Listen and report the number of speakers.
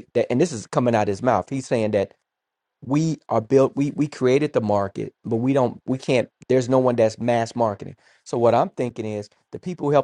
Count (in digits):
1